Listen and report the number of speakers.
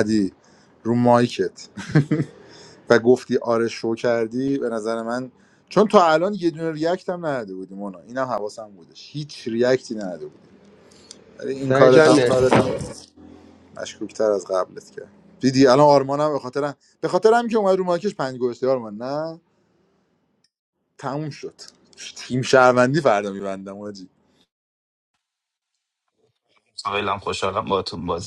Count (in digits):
3